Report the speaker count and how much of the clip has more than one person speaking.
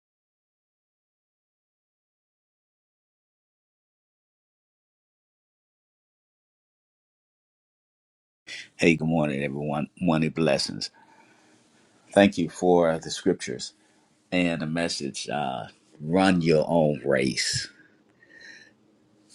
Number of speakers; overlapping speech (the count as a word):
one, no overlap